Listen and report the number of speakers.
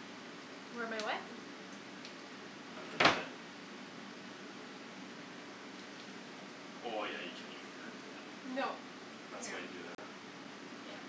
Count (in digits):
2